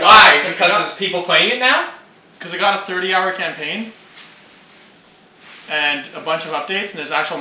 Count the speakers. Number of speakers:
2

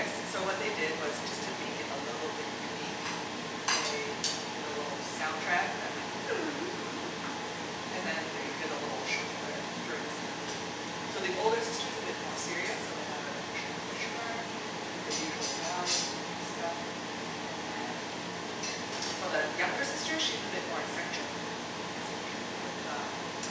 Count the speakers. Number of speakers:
1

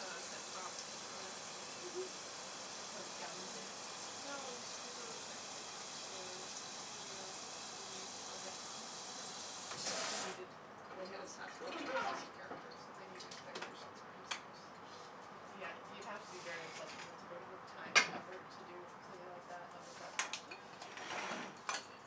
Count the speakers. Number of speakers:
2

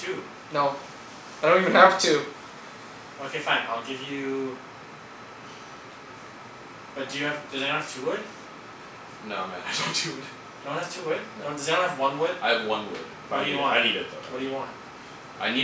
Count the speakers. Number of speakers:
3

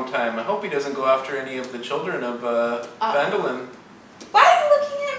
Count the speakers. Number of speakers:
2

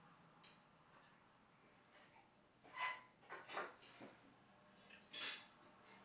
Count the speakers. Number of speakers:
0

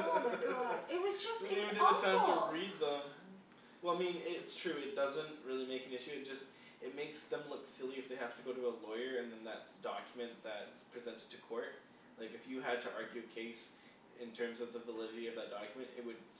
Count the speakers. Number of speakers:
2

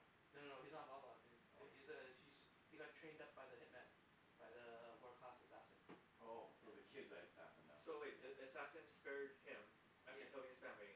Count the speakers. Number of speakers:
3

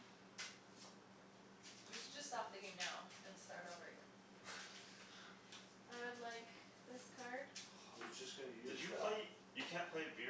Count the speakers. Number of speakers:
4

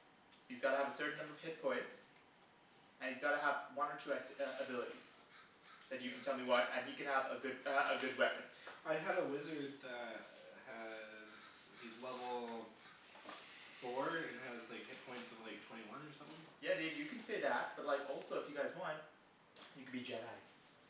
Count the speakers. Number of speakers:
2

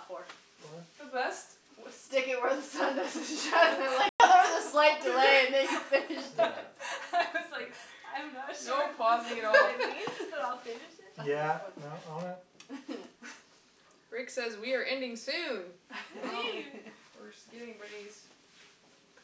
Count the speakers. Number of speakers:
4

